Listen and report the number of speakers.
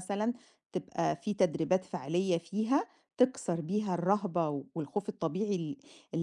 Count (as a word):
one